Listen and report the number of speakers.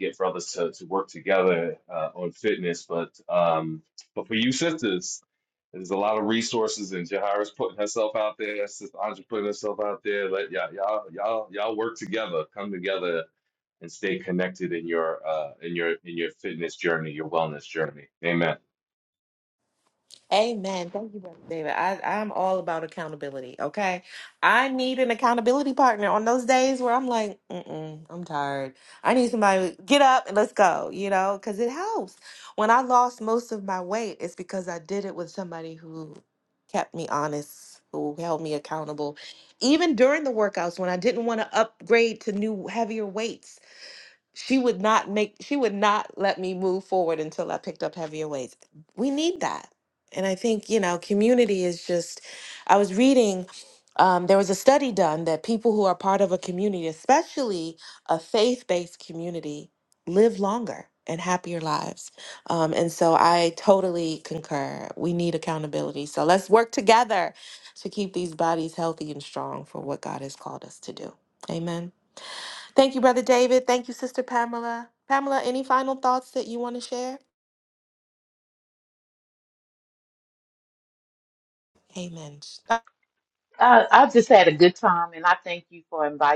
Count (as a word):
three